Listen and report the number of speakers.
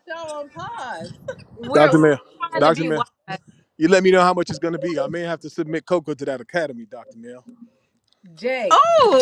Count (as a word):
three